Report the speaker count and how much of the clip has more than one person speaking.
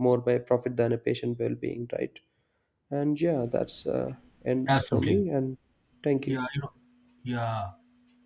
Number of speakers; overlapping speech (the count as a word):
two, about 8%